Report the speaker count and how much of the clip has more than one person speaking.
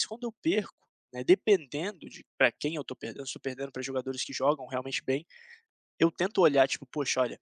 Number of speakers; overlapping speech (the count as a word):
one, no overlap